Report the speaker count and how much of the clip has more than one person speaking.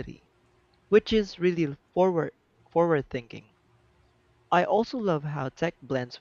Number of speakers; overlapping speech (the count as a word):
one, no overlap